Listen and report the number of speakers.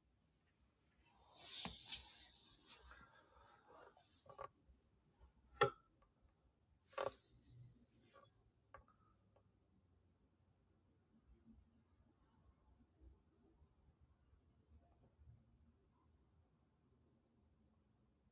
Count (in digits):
0